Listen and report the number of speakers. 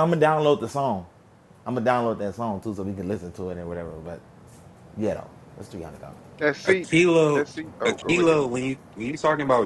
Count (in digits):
3